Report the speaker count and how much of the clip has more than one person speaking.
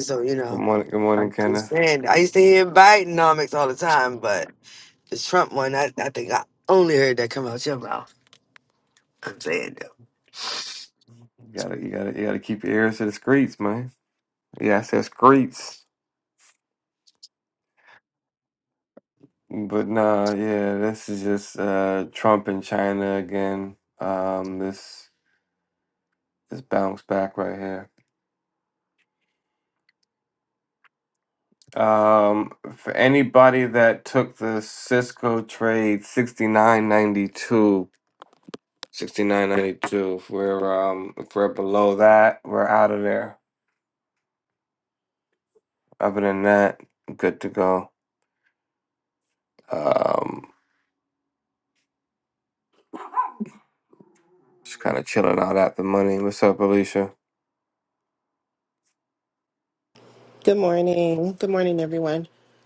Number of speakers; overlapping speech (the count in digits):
3, about 1%